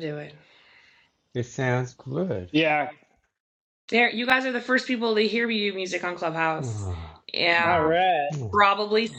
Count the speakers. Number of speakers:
3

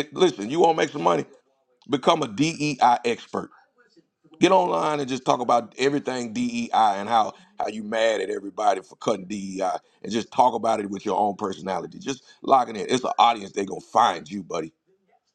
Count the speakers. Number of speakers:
1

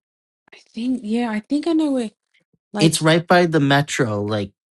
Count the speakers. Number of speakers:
2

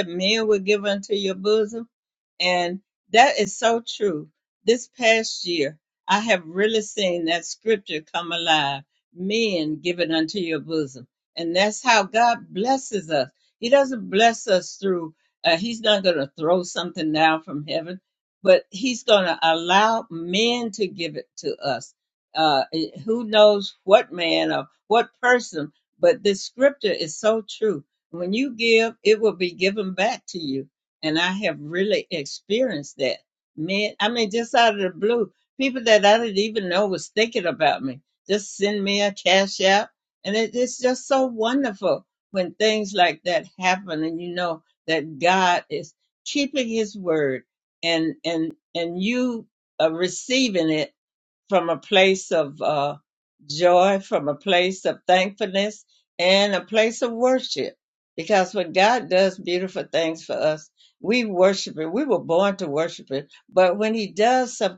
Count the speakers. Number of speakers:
1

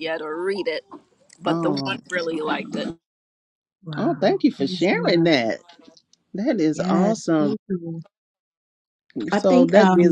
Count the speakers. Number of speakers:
3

